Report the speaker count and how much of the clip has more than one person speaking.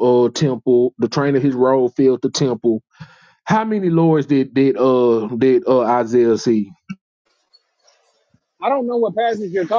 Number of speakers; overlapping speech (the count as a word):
two, no overlap